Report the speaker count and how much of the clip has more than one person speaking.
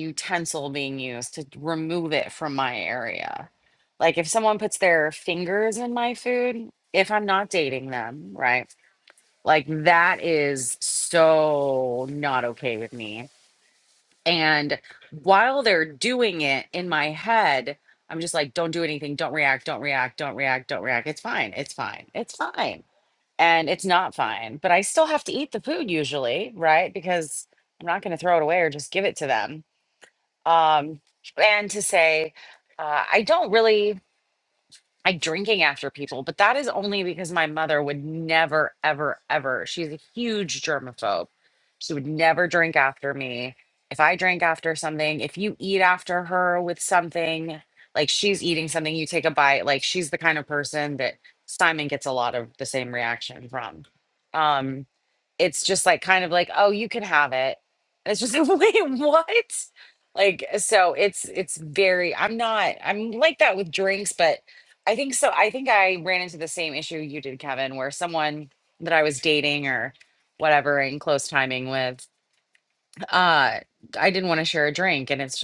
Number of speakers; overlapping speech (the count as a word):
one, no overlap